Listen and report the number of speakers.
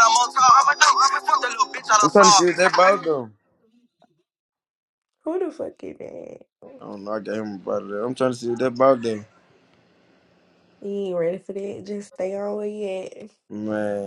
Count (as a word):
three